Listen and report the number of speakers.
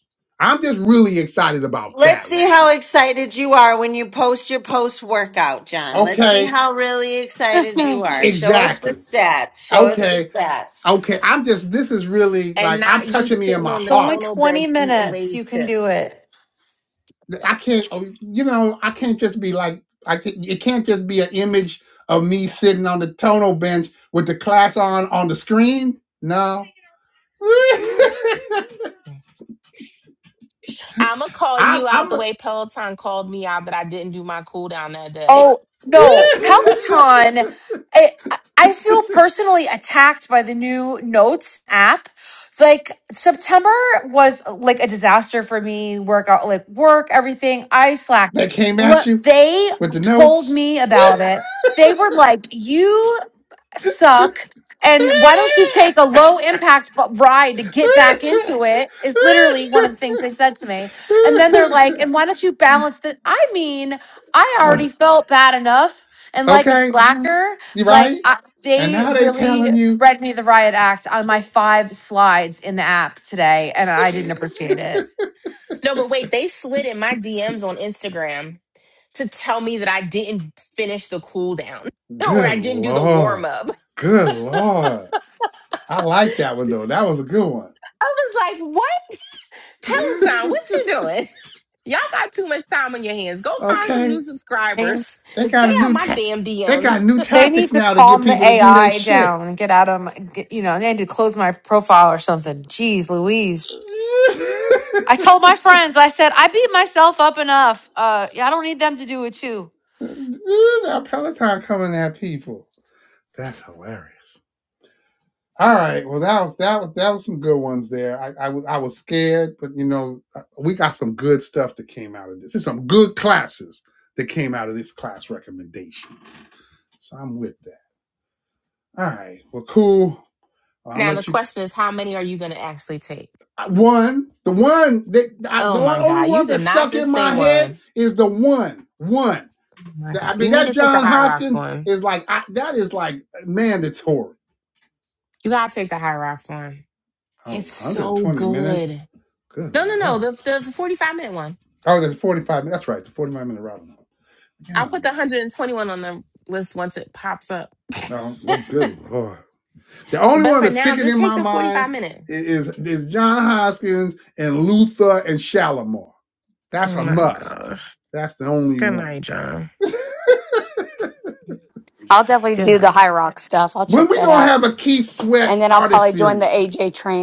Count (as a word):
five